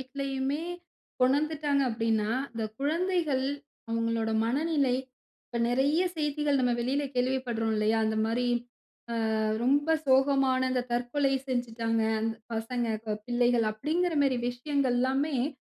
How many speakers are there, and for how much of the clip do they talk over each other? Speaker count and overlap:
1, no overlap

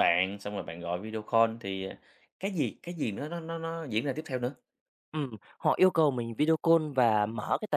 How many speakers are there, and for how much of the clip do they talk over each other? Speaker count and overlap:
2, no overlap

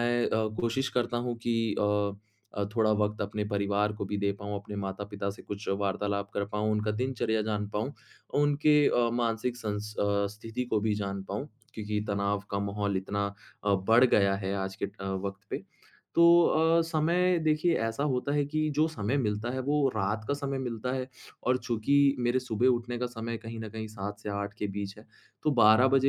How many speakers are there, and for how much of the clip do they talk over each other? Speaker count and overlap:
1, no overlap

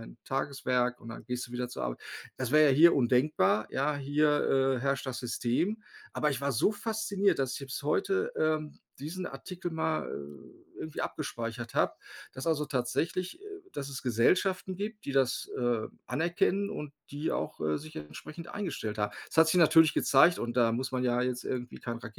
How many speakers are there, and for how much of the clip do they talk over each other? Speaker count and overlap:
1, no overlap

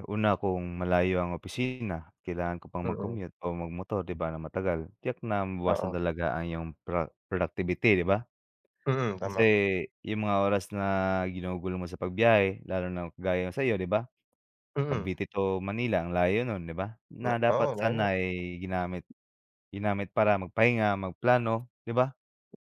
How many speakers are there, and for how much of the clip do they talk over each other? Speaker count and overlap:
2, about 8%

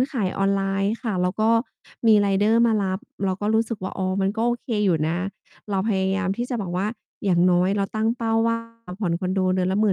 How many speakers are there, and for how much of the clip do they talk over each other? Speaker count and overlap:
1, no overlap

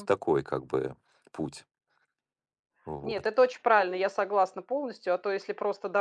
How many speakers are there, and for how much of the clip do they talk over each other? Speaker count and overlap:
2, about 5%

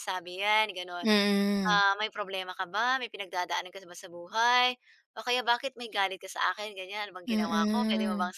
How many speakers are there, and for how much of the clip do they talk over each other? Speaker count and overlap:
2, about 14%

